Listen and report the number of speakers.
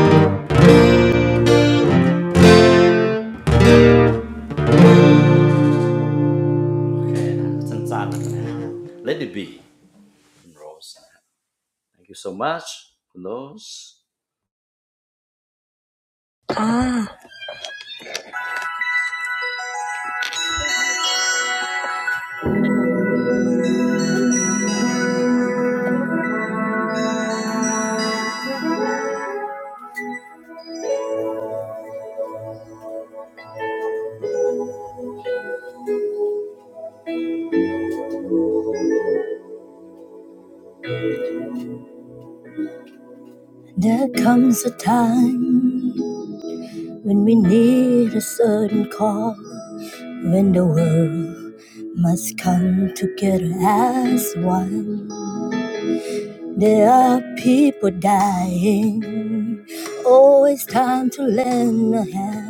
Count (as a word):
two